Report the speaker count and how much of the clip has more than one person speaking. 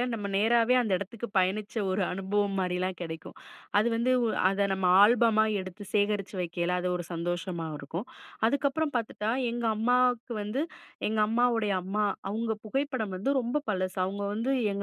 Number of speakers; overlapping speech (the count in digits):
1, no overlap